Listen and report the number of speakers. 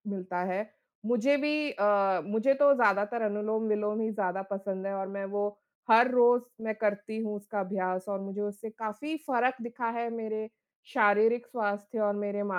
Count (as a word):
one